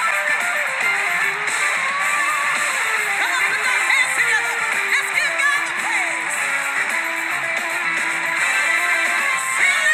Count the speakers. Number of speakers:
0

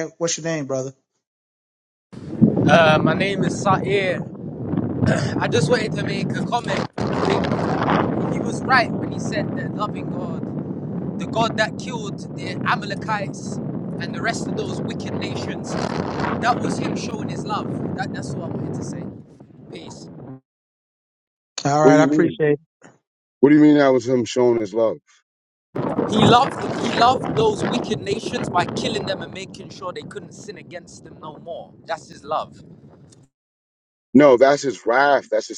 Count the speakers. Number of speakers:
3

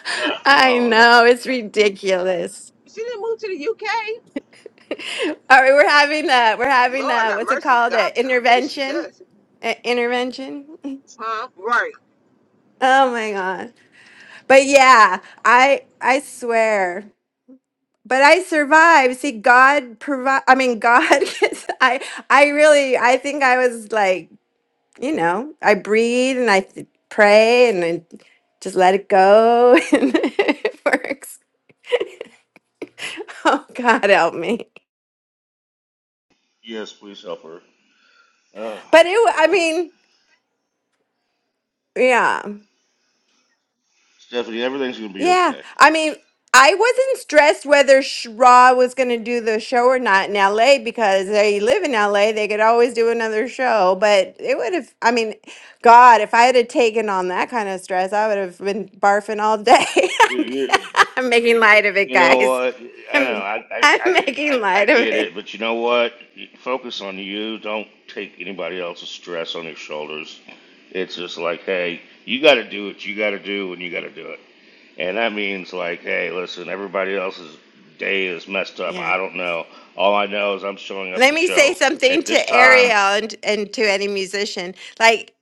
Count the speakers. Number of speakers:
3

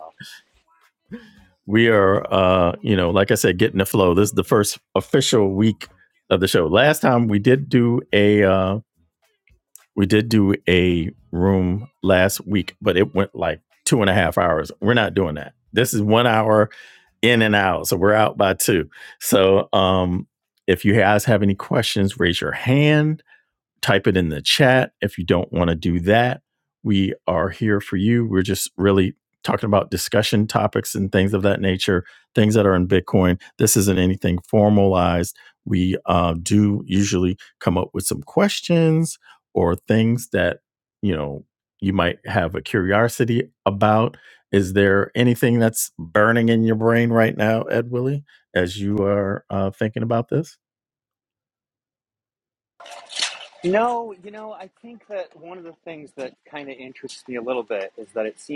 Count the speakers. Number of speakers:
2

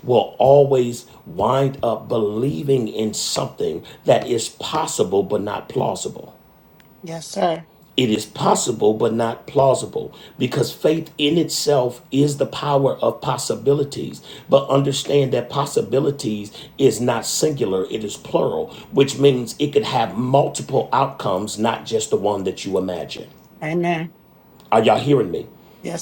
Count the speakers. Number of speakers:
2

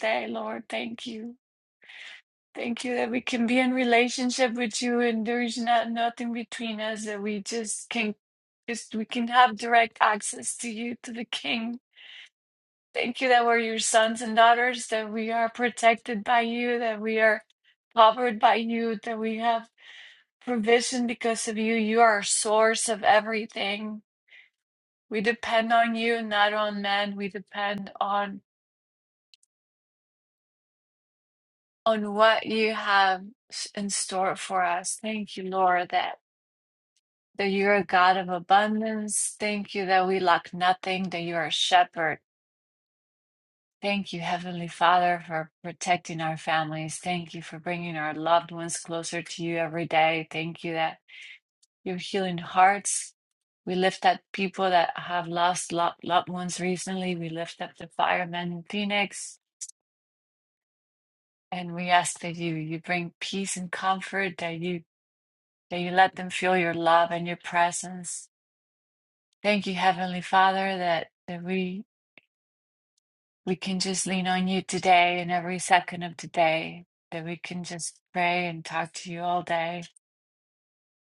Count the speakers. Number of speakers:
1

